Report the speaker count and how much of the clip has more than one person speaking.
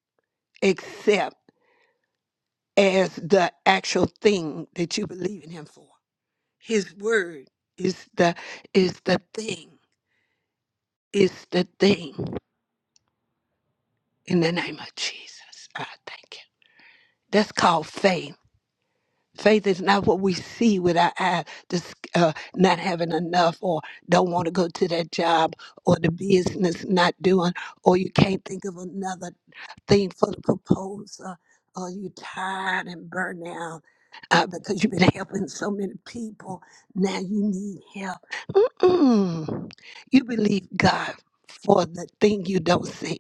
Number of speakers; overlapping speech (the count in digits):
1, no overlap